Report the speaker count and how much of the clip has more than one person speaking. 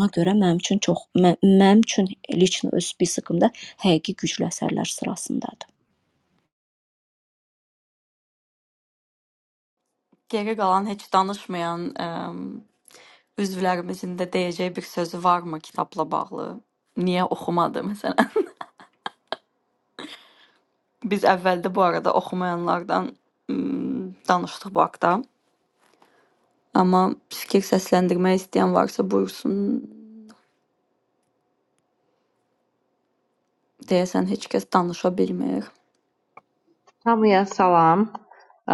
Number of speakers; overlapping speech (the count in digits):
3, no overlap